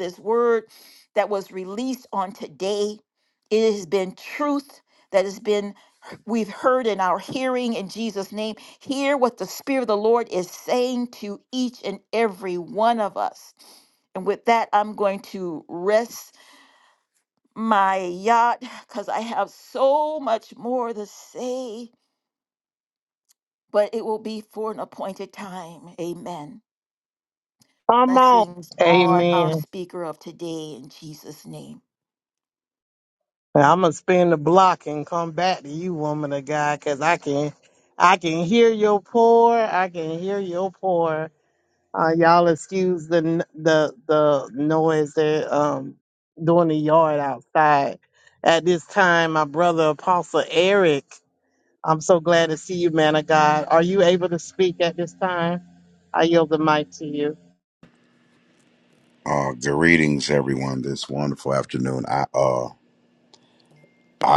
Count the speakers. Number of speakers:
three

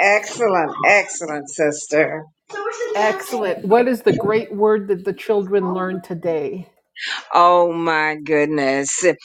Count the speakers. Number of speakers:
two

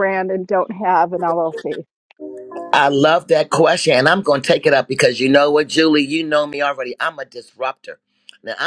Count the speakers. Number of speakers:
two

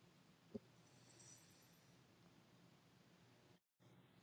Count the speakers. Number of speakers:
zero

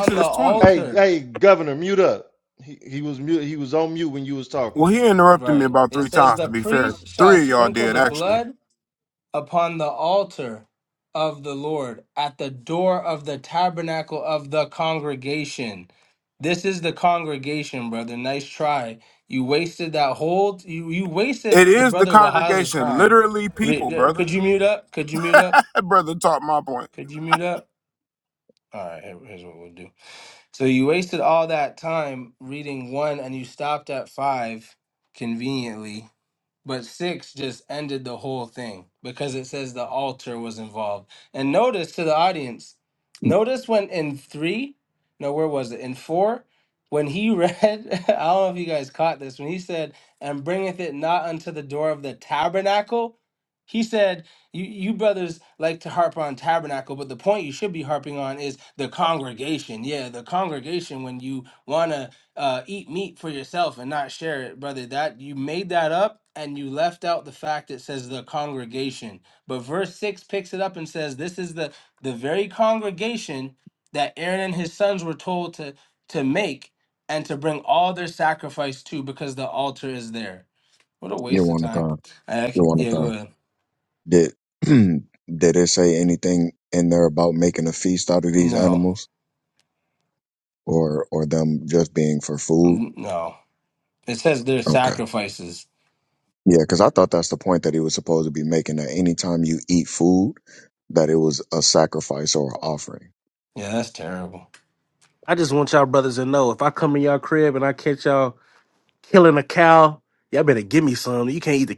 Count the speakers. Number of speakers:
five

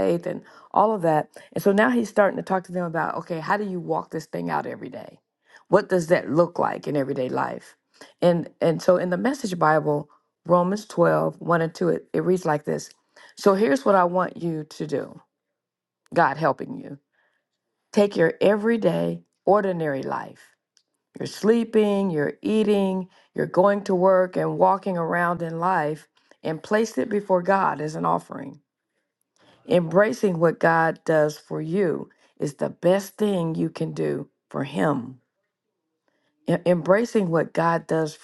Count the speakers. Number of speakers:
one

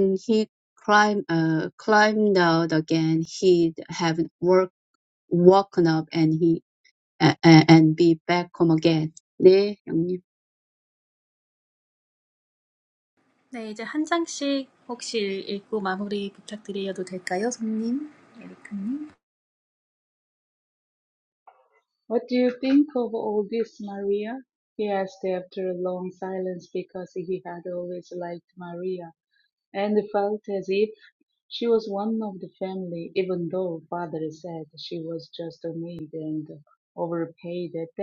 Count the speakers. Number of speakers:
three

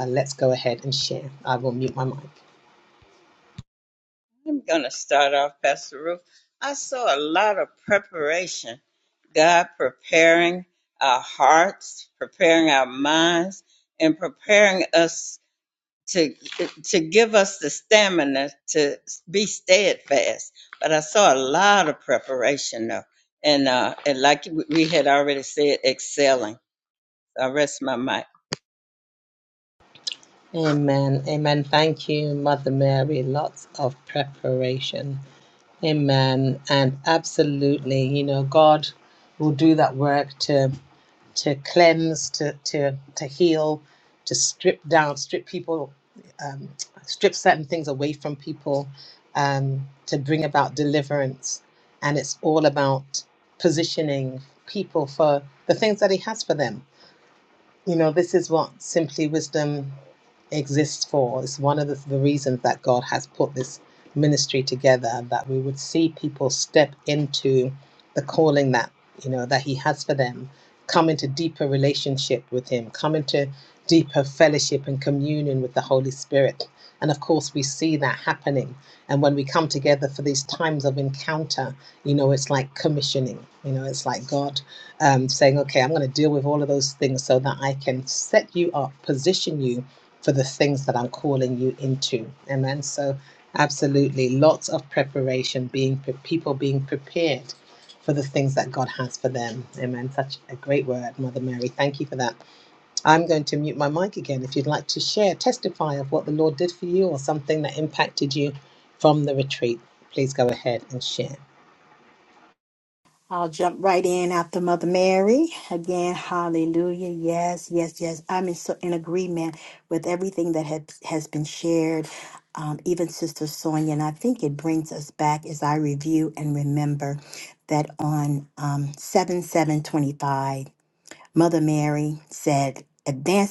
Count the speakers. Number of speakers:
three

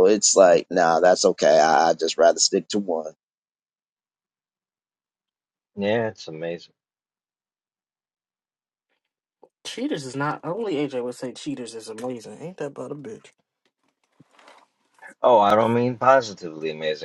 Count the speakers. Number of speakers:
three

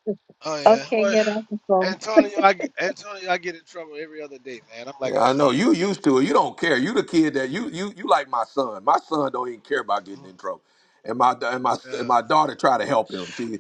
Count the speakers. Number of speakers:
three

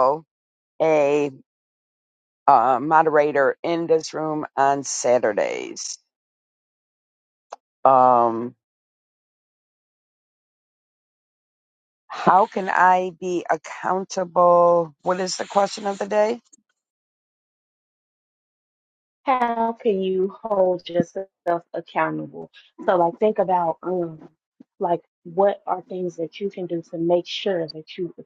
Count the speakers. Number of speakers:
two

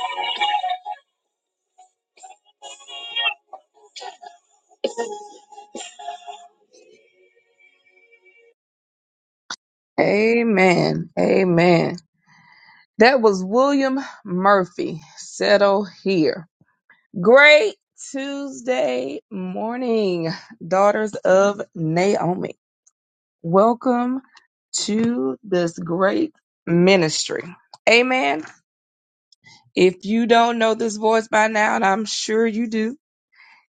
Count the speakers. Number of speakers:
one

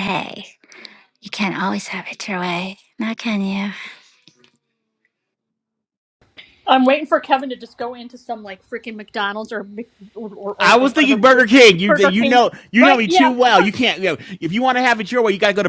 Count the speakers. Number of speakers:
three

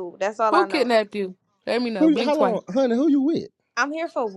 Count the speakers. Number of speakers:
three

